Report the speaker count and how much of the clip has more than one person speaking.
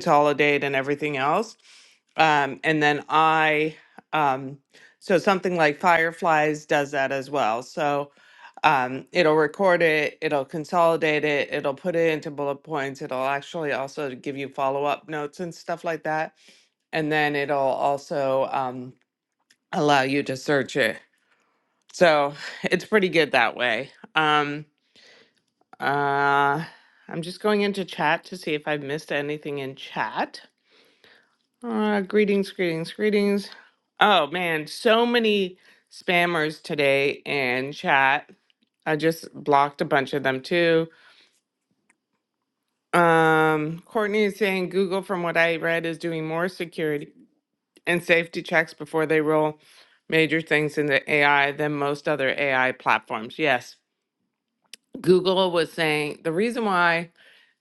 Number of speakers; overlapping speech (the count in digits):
1, no overlap